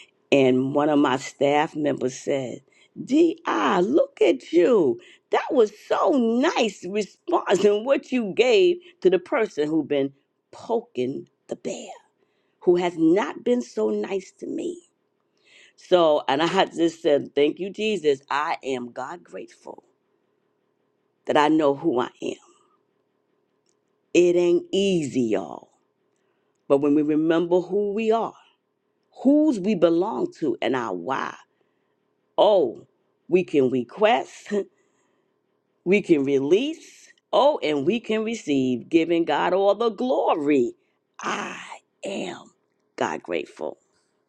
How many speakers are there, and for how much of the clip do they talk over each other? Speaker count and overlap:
1, no overlap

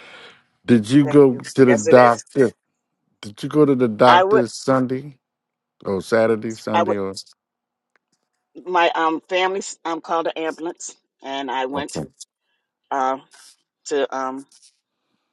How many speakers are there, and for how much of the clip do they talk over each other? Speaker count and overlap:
2, about 13%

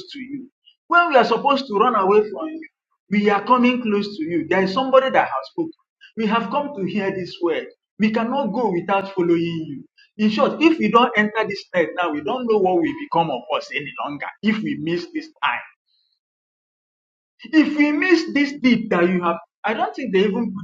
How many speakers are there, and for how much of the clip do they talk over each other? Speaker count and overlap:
1, no overlap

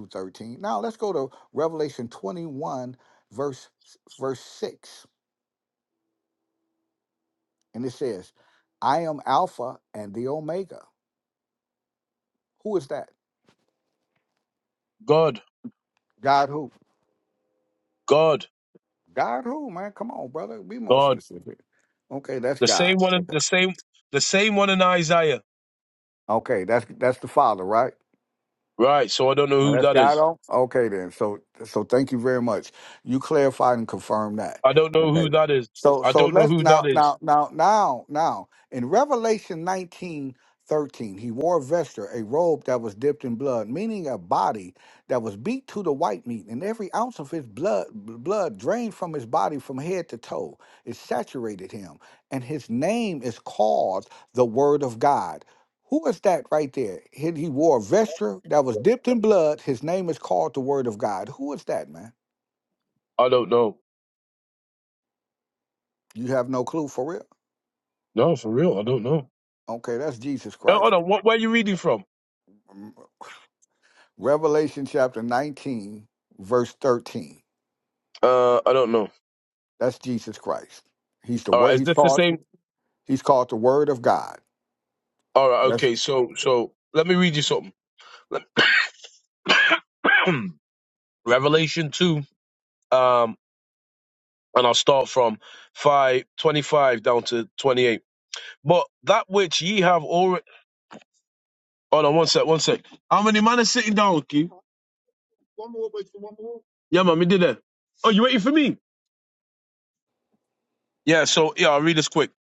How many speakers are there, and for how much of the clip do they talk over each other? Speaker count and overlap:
2, about 3%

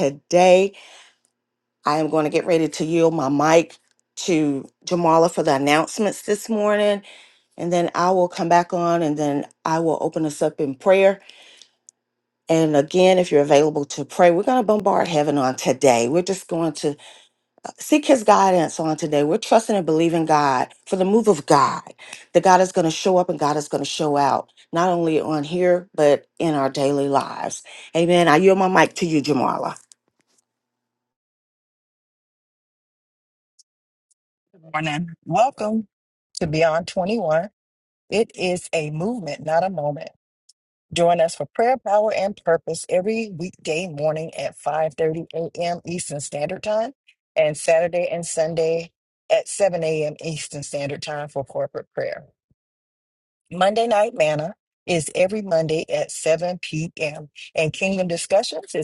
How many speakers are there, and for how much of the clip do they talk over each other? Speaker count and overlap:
2, no overlap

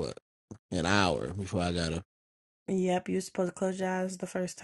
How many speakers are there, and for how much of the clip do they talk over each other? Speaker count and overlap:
2, no overlap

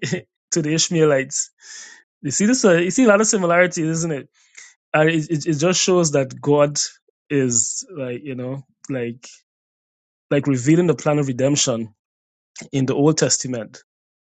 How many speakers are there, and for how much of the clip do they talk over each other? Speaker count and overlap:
1, no overlap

